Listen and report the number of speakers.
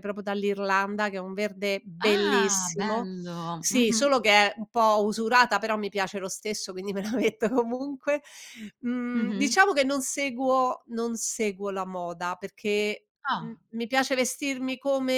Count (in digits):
2